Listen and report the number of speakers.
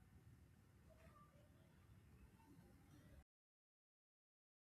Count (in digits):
0